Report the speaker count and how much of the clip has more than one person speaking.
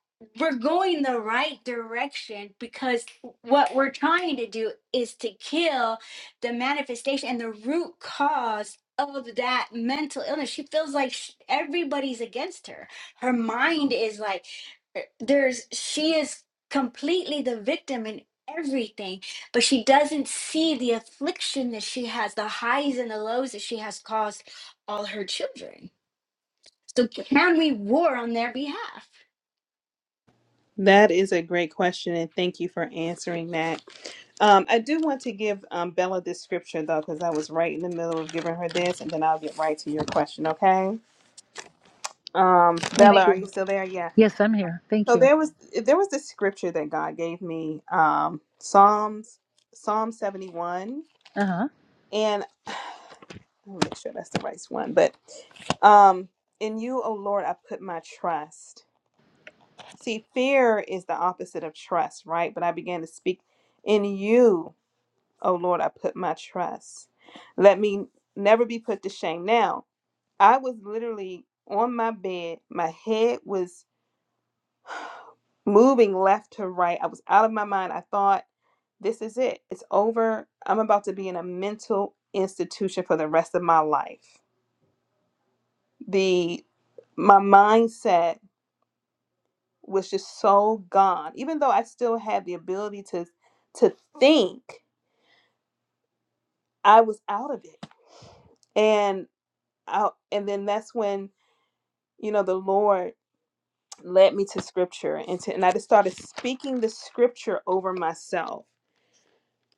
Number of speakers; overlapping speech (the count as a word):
three, about 1%